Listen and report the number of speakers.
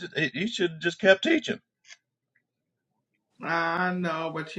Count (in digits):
2